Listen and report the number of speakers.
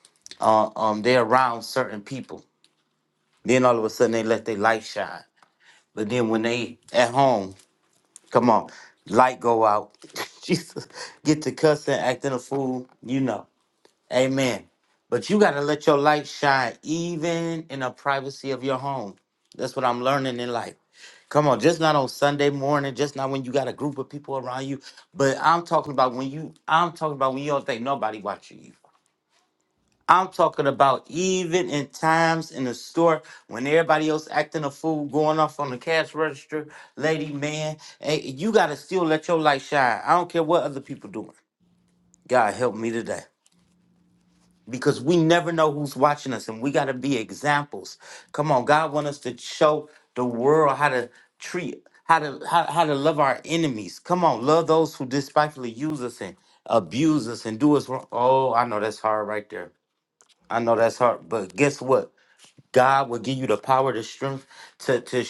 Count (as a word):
one